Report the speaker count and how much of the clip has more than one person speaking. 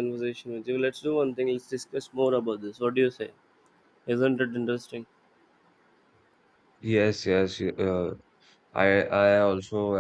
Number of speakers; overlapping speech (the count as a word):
two, no overlap